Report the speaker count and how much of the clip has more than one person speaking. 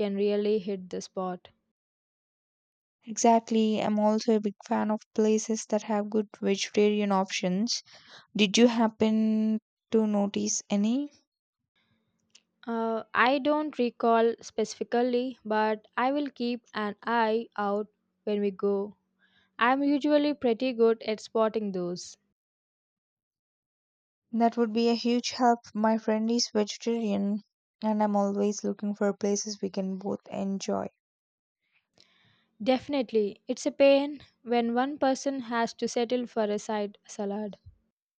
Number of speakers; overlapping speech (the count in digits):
2, no overlap